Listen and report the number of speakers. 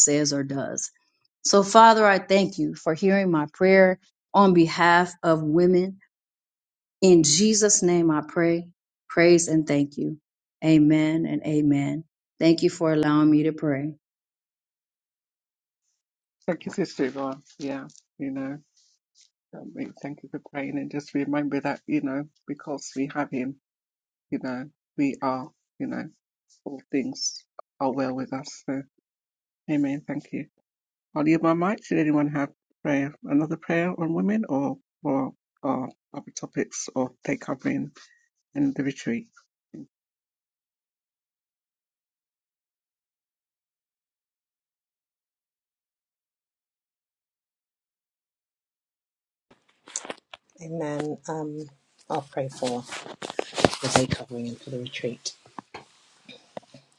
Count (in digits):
3